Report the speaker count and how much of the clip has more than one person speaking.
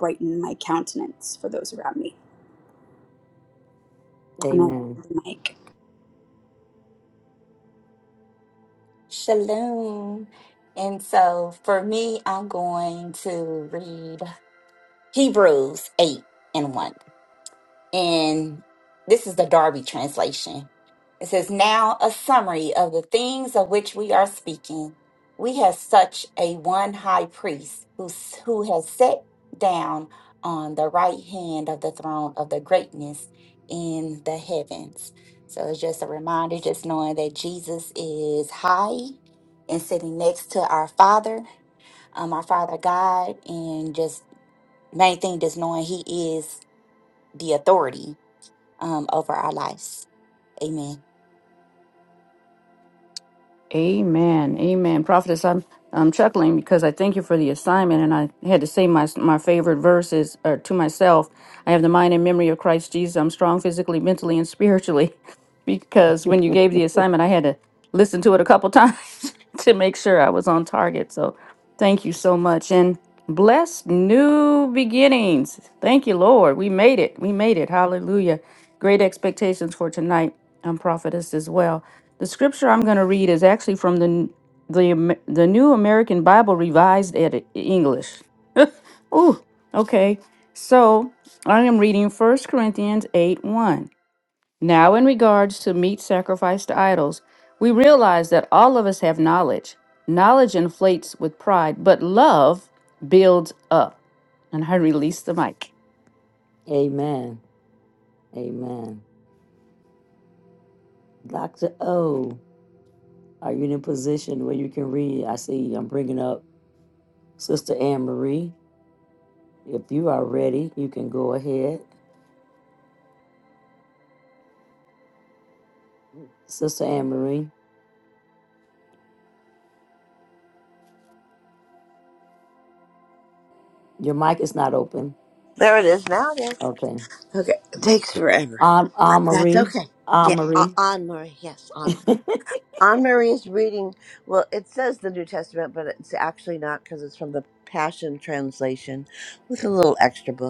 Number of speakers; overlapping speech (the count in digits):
5, about 1%